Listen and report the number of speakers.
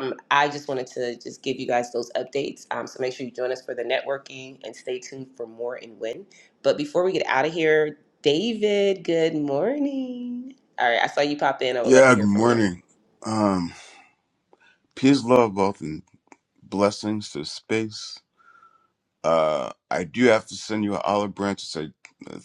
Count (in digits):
2